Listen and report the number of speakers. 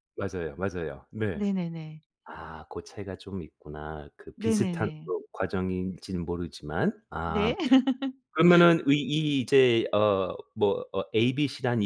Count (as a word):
two